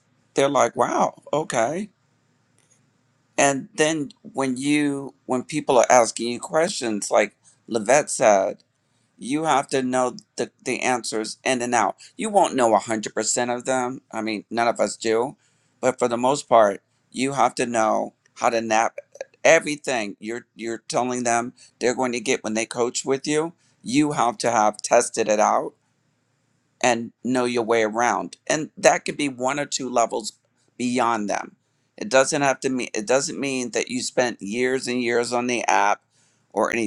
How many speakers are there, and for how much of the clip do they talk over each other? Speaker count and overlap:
1, no overlap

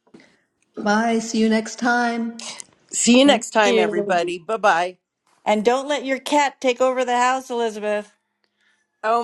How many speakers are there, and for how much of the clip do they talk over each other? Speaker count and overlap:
3, about 11%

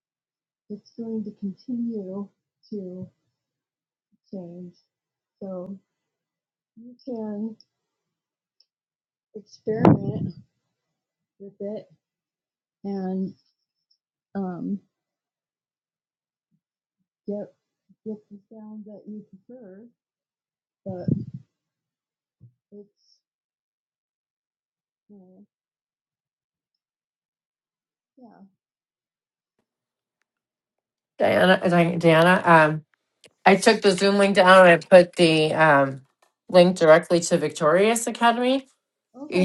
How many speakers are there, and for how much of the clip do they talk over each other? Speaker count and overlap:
2, under 1%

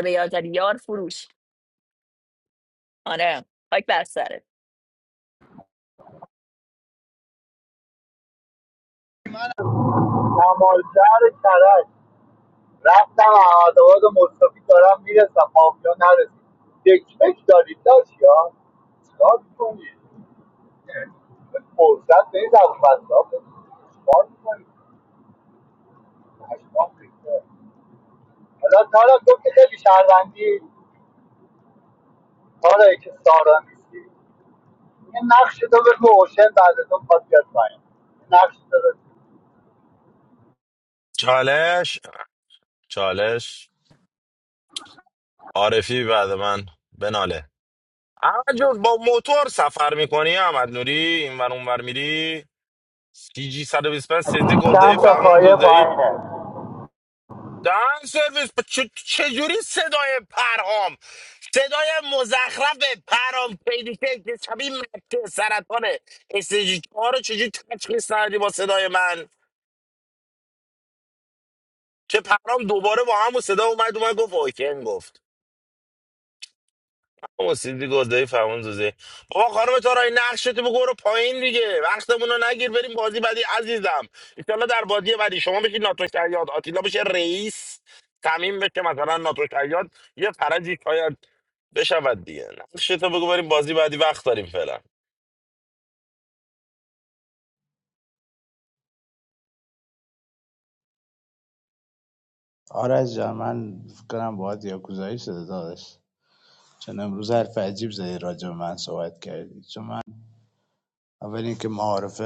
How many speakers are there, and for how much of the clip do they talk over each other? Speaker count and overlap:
4, about 1%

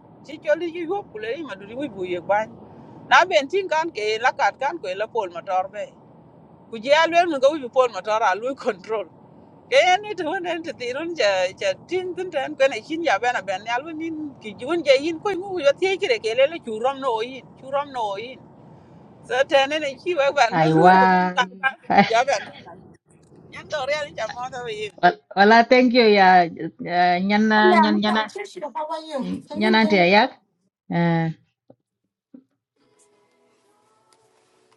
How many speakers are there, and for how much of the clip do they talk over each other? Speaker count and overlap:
3, about 3%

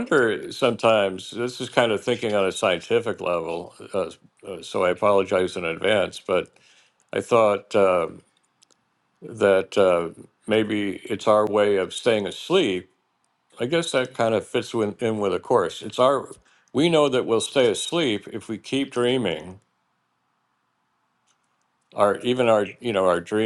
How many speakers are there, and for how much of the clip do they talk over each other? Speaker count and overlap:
1, no overlap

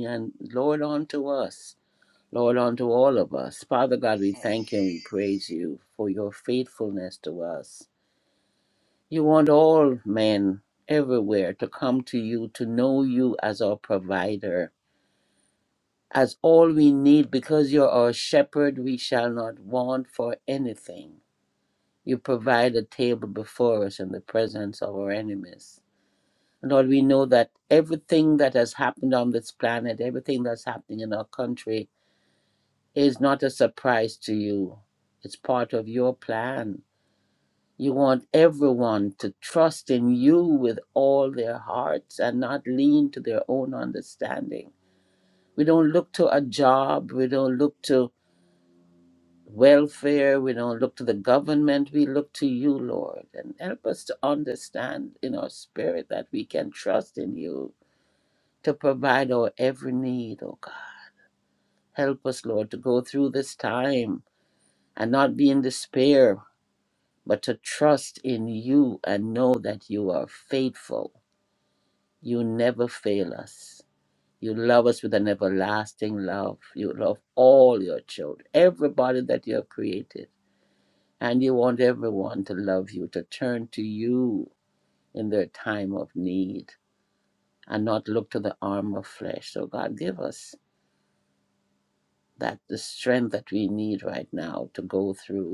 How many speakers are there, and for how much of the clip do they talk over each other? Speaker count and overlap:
1, no overlap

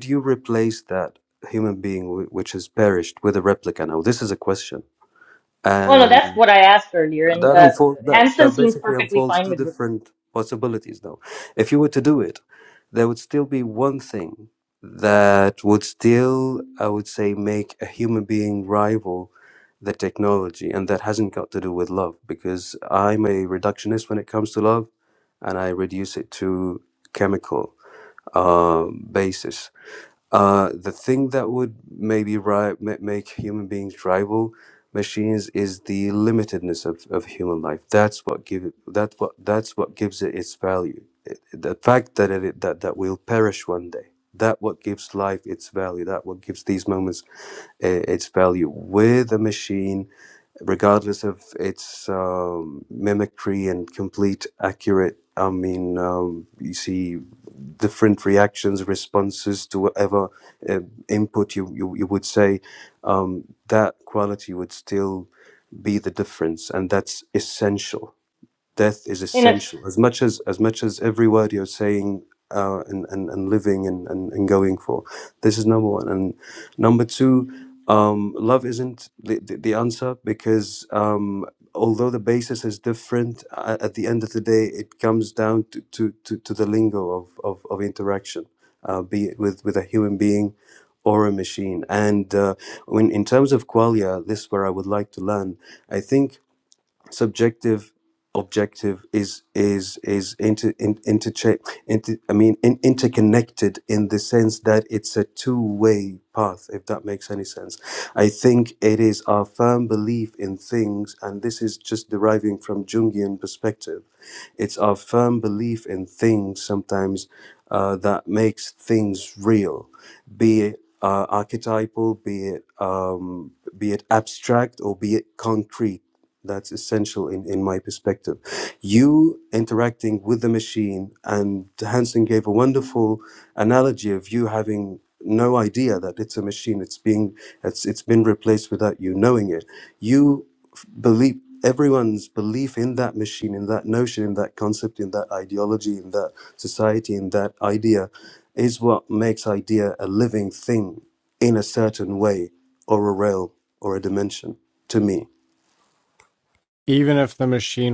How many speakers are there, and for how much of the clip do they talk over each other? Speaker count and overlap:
3, about 2%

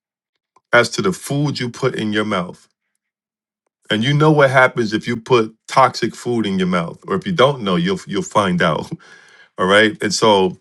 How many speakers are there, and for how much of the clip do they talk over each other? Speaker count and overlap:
1, no overlap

